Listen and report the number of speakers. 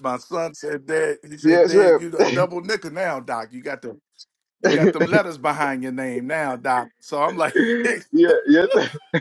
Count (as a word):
two